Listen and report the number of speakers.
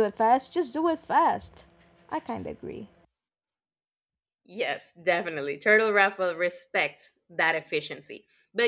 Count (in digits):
2